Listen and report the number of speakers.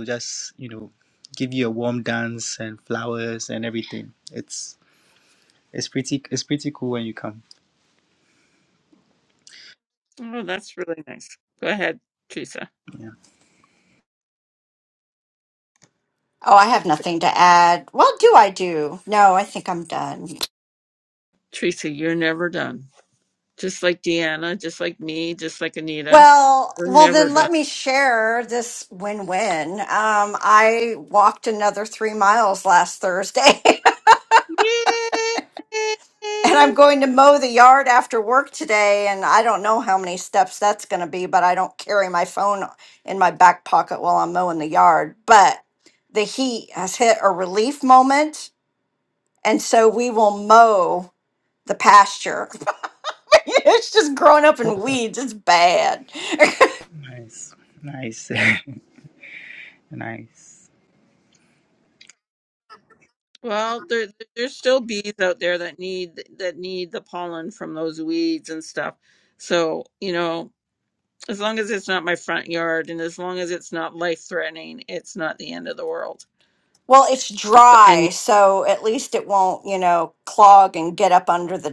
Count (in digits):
3